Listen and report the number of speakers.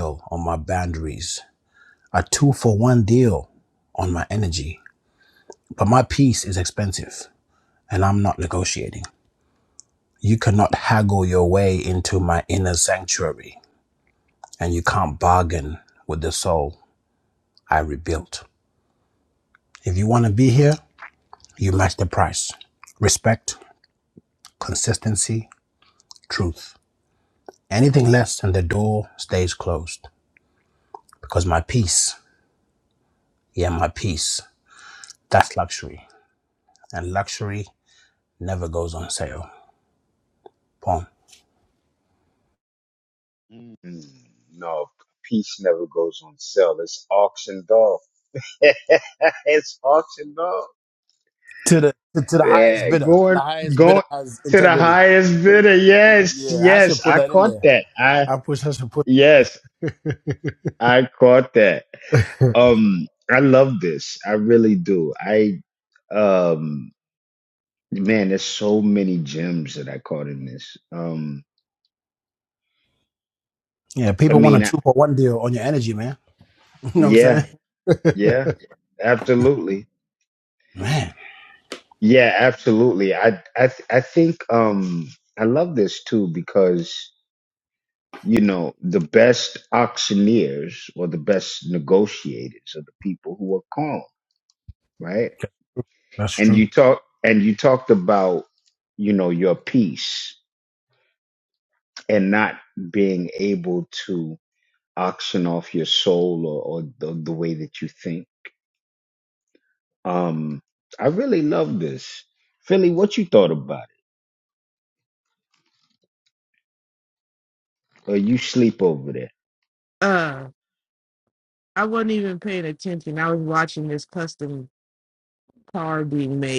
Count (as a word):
three